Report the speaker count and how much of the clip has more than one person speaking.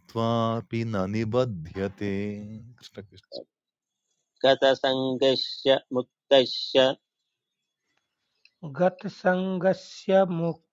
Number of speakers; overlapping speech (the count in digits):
3, no overlap